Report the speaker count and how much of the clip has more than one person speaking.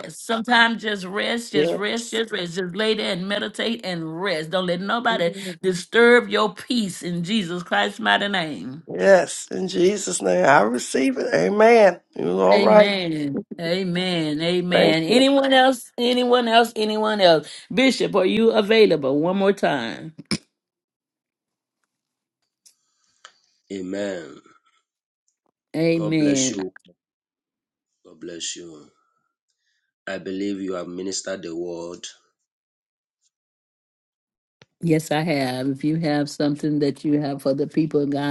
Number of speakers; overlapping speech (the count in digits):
3, about 3%